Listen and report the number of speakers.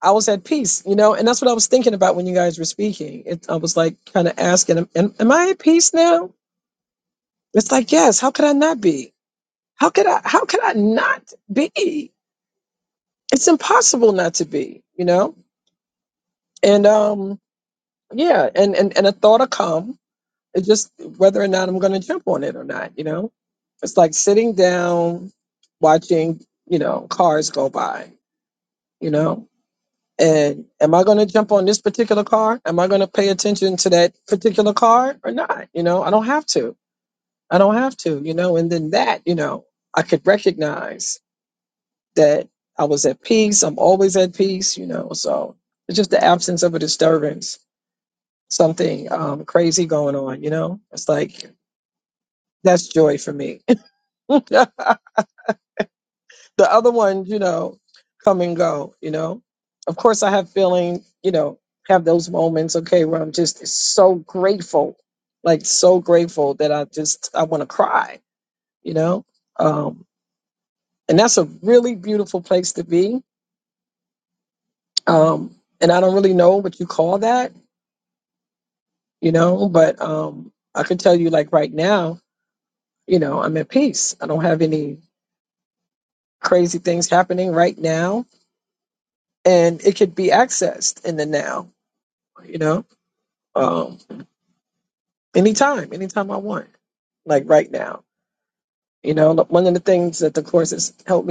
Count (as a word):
one